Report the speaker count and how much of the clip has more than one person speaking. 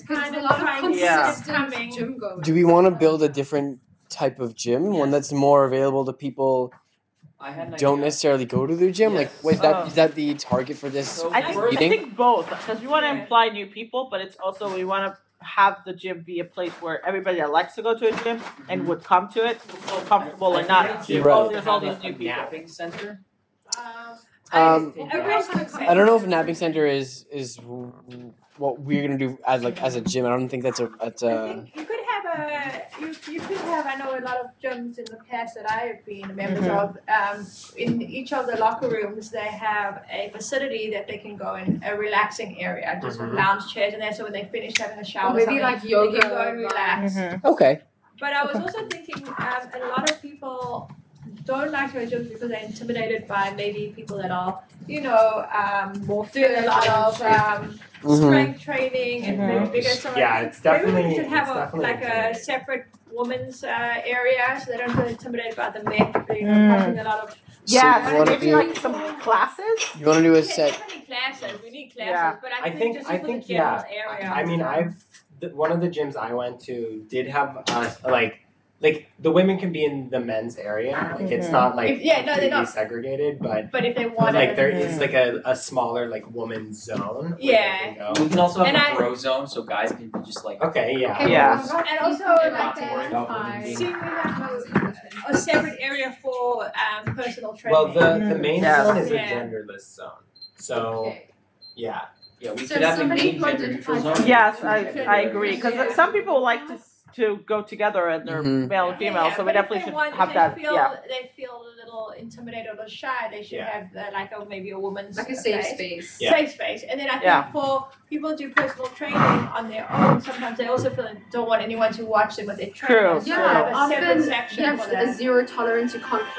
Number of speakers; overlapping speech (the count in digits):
6, about 36%